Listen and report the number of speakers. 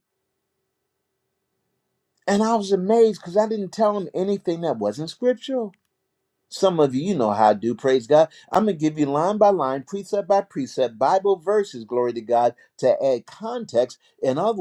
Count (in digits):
1